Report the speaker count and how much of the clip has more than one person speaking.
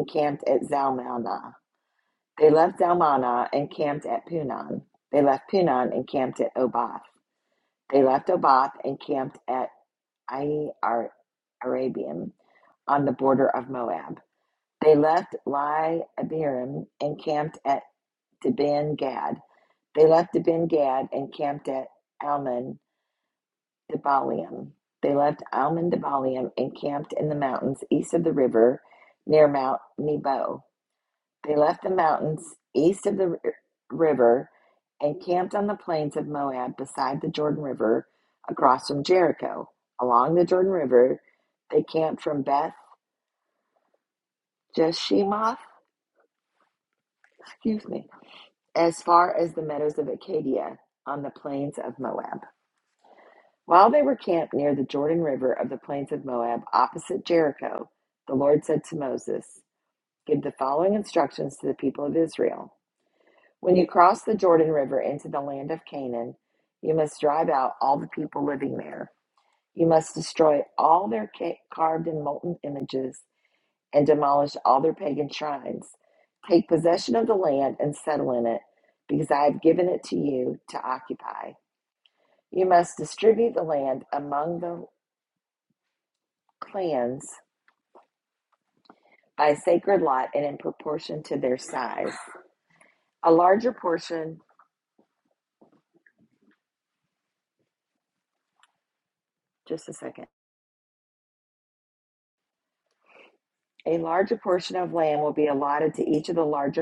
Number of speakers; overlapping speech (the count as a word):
one, no overlap